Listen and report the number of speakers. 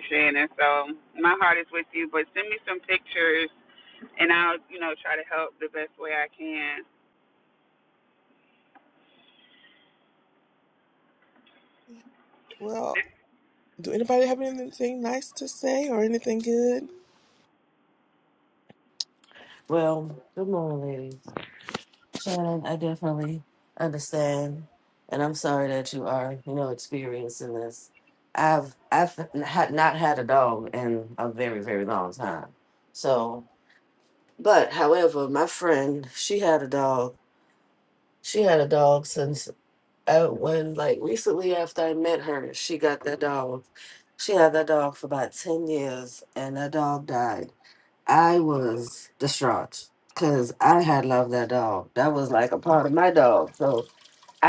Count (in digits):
3